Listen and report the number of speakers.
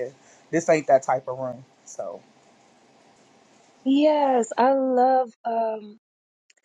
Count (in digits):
2